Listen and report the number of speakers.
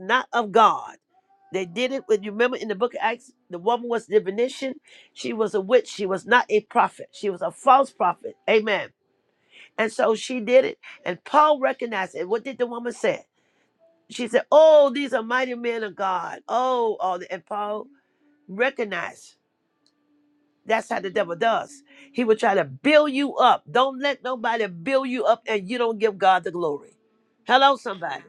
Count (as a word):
one